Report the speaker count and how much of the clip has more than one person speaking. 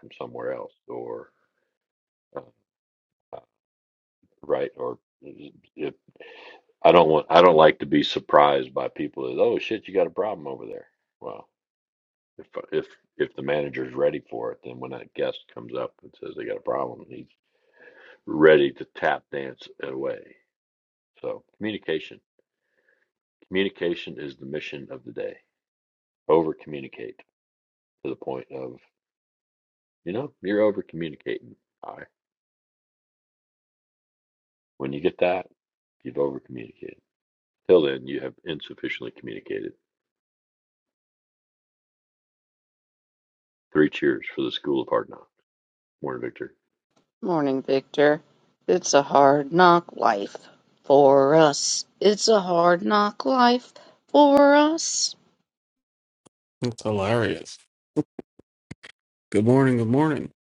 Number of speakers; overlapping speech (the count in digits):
3, no overlap